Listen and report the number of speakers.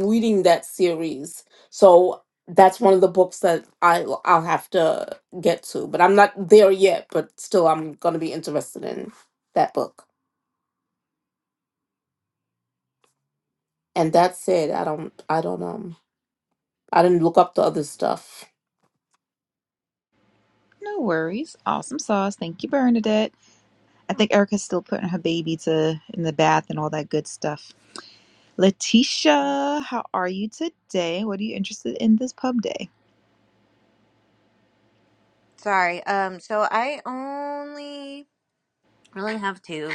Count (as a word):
three